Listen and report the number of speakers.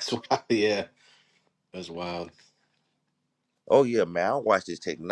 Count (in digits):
2